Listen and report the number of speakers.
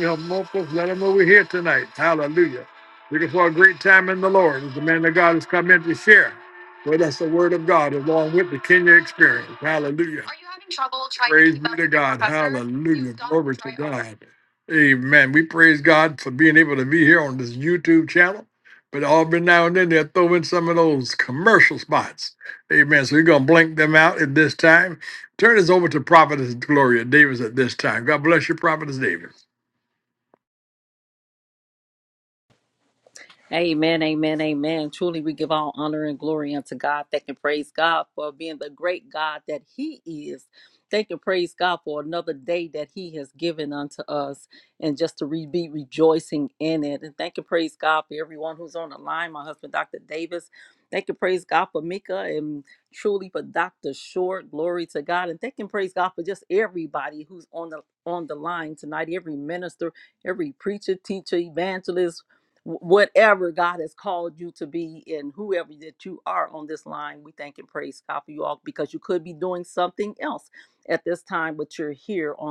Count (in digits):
2